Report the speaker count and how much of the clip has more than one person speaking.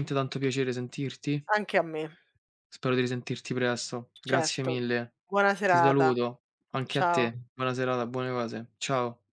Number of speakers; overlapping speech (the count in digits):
2, about 17%